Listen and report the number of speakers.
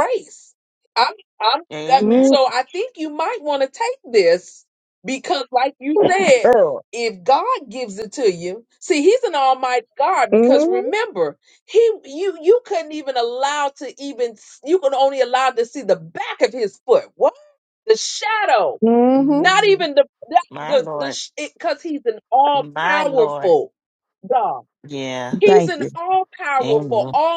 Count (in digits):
3